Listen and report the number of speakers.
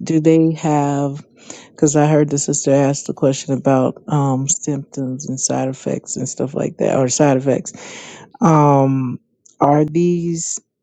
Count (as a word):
one